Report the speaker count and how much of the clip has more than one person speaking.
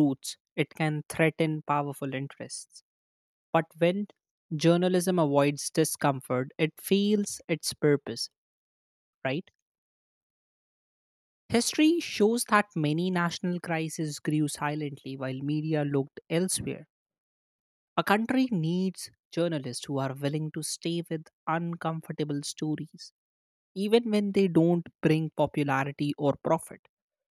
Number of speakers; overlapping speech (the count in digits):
1, no overlap